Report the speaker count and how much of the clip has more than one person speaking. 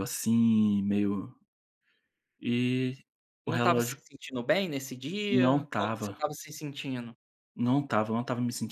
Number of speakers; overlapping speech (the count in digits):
2, about 16%